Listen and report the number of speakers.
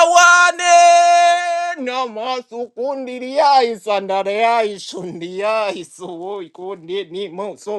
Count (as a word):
one